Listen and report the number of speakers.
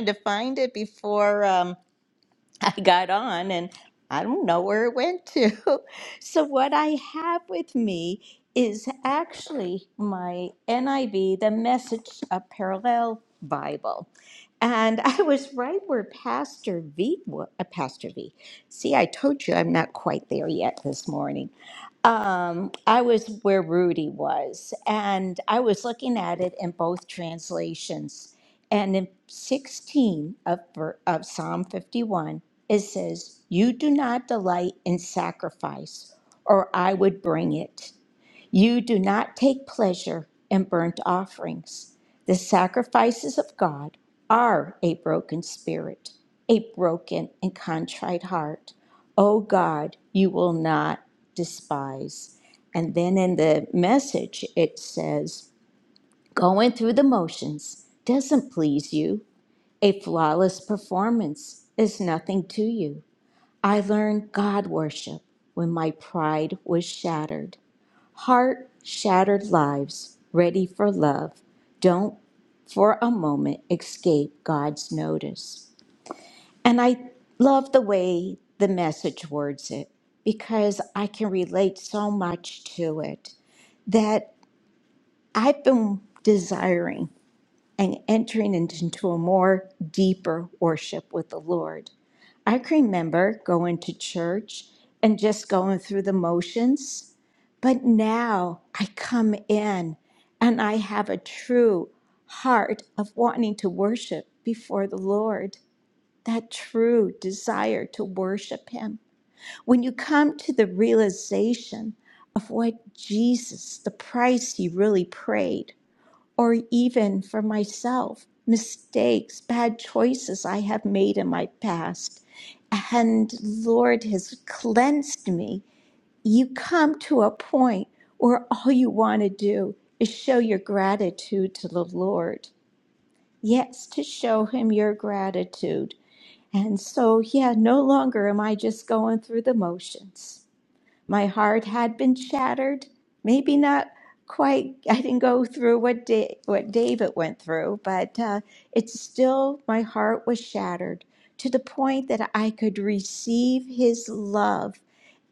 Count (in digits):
1